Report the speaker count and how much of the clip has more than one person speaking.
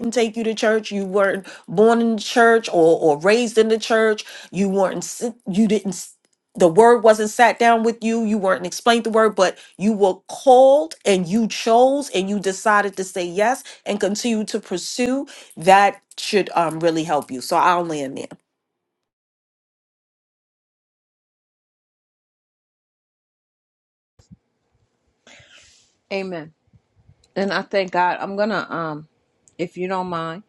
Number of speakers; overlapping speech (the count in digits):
2, no overlap